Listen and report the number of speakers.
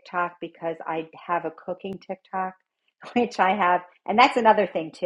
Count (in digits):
1